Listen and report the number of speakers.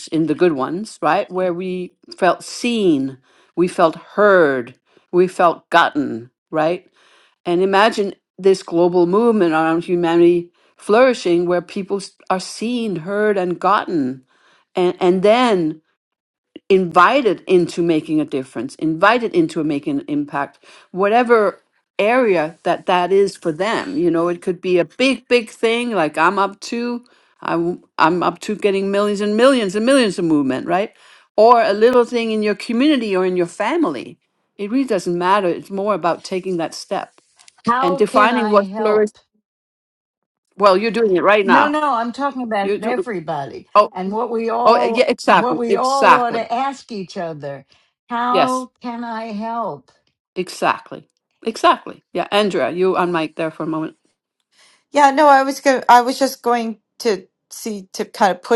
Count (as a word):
three